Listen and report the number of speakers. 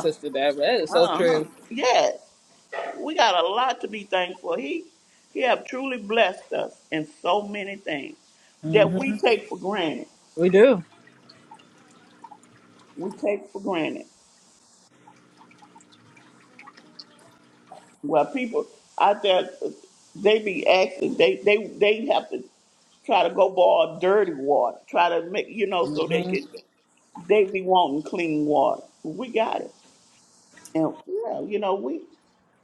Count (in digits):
2